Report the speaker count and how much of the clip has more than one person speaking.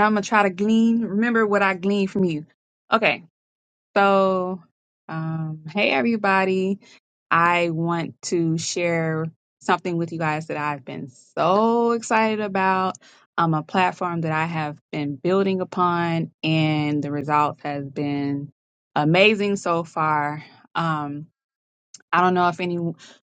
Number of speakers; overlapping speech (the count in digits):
1, no overlap